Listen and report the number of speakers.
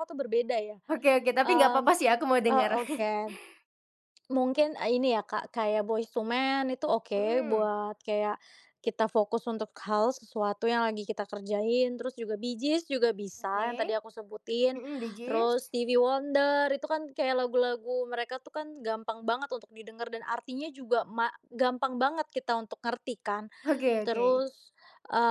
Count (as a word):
two